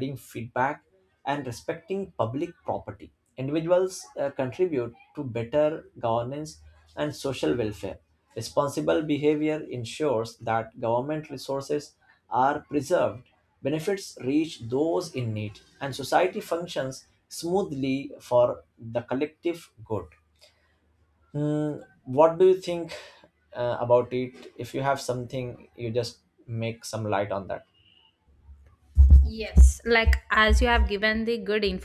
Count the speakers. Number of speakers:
2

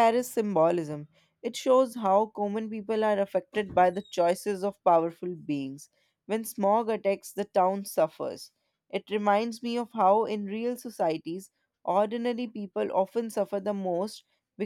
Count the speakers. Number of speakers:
1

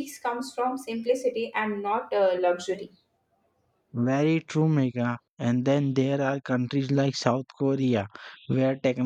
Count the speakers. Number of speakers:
2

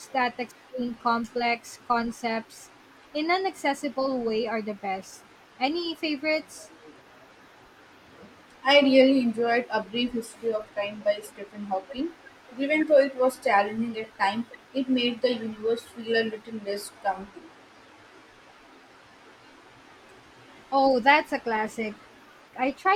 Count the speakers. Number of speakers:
2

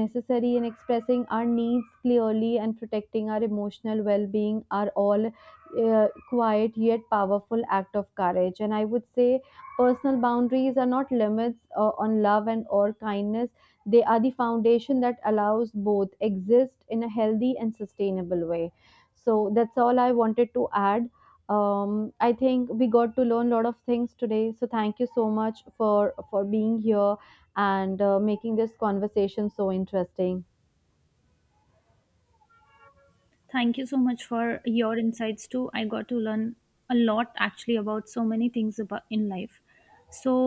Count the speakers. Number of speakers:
2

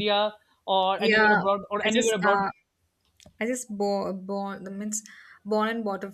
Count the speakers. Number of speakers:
2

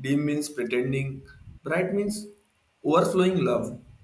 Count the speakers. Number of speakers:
1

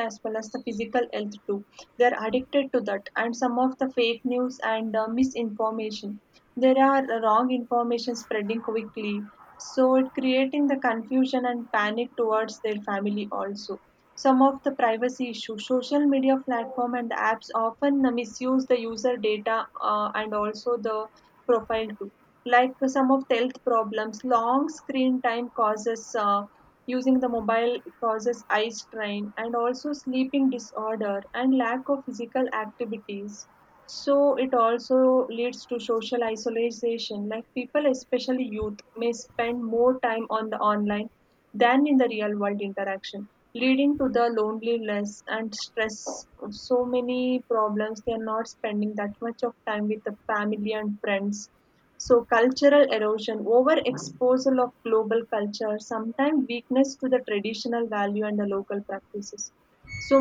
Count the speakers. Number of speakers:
1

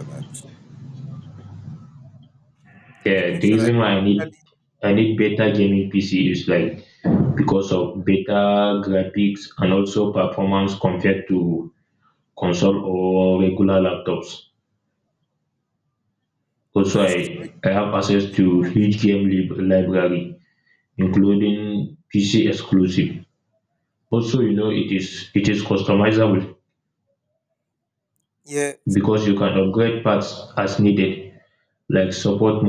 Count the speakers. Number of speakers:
2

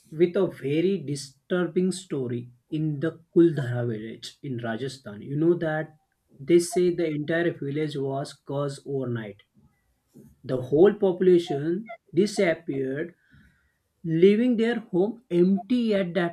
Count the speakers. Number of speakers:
1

